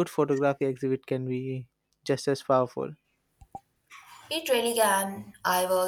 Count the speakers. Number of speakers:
two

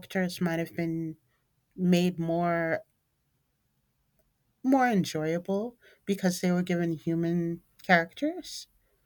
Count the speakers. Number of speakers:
one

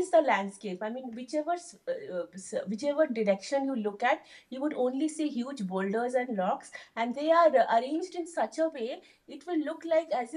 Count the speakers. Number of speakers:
one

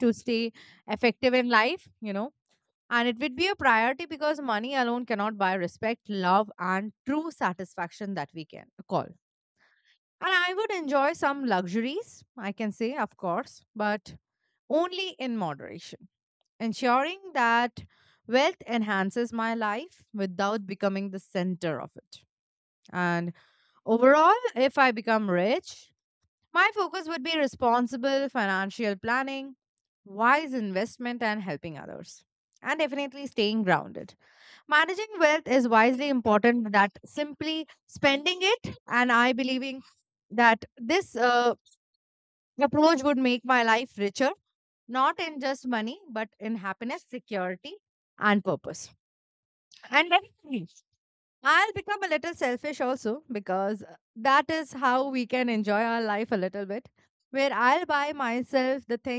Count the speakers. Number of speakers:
one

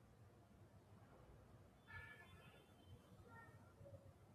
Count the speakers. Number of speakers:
zero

